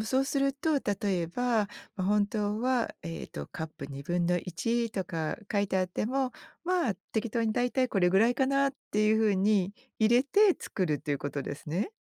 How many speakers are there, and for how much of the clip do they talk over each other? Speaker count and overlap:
1, no overlap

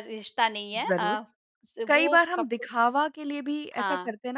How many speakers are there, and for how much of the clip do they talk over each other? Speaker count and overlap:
2, about 33%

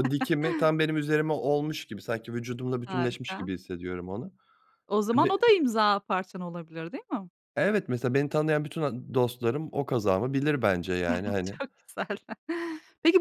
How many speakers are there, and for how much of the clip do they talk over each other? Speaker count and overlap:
2, about 7%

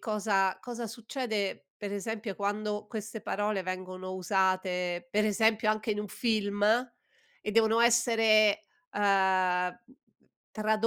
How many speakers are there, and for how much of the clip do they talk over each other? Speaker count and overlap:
1, no overlap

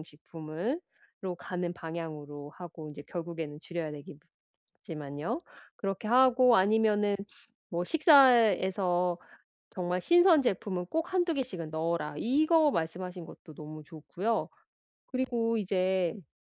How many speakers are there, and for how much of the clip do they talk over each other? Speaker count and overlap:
1, no overlap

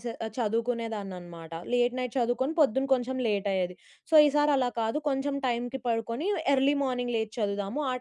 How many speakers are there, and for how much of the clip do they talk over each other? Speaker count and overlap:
1, no overlap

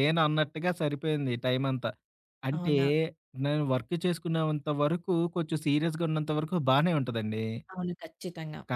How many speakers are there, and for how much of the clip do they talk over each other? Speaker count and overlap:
2, about 3%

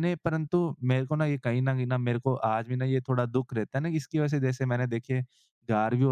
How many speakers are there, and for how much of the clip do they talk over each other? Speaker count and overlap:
1, no overlap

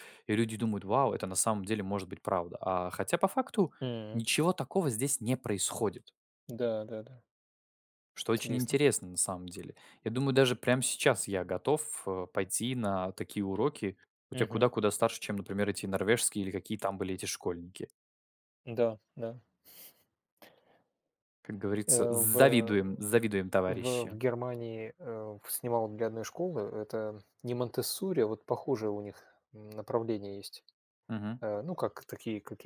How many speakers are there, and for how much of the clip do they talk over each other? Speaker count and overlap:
2, about 7%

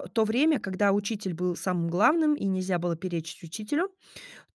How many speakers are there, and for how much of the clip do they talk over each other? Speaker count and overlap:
1, no overlap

